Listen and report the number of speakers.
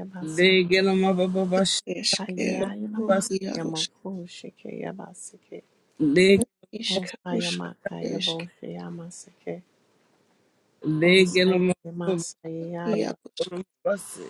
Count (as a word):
three